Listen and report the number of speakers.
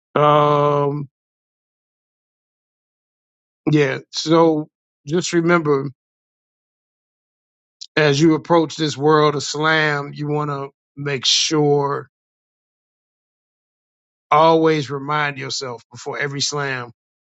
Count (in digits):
1